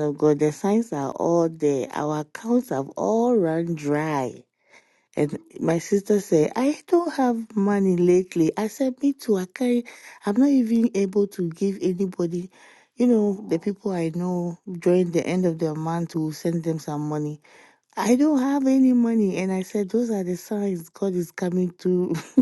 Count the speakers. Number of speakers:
1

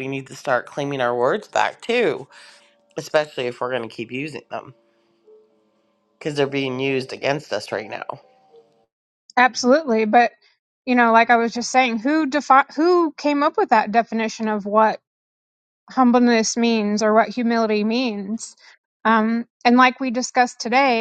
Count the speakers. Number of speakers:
2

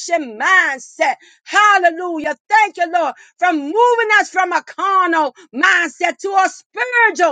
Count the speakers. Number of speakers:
1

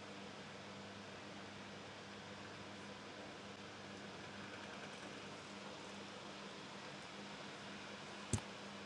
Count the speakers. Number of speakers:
0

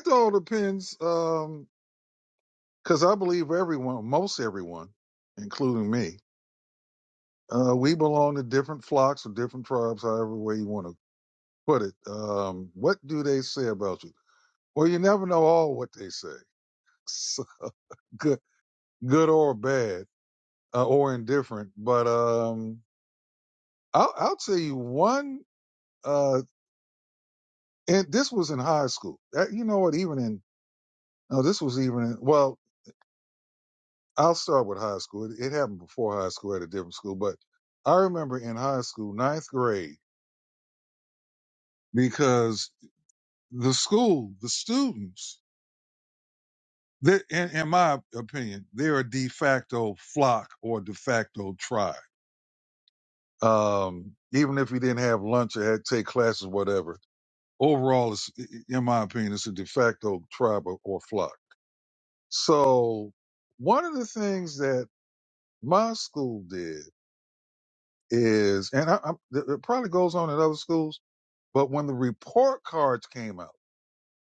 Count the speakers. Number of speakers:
1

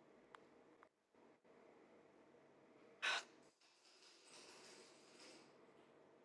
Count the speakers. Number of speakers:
0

